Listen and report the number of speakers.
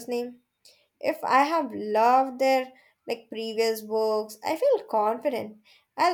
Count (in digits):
1